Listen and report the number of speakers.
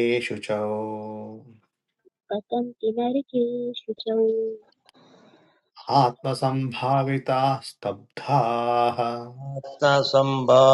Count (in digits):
3